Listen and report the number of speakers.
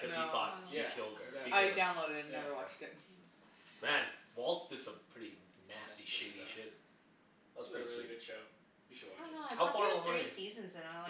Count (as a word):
four